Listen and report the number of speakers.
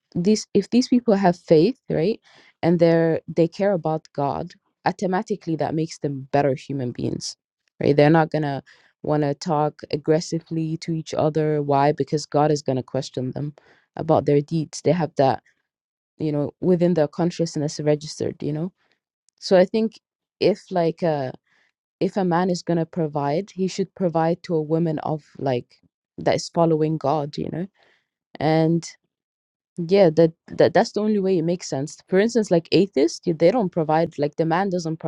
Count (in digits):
1